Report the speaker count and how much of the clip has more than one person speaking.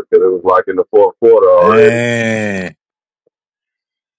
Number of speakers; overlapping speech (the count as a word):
two, about 10%